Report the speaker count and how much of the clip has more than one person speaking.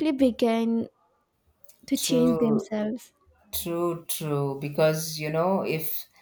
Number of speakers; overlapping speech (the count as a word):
two, about 12%